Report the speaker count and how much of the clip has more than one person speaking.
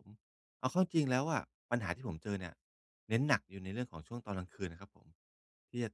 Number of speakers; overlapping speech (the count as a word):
one, no overlap